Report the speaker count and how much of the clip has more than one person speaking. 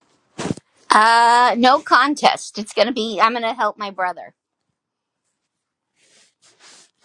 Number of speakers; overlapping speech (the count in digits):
1, no overlap